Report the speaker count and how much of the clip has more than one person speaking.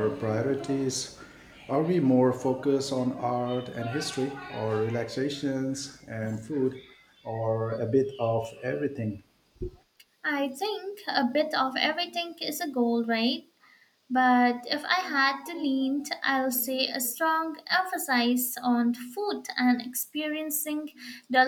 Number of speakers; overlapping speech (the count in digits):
2, no overlap